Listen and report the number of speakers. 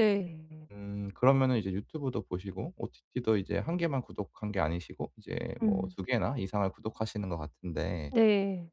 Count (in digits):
2